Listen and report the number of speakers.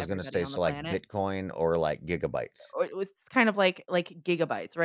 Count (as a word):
two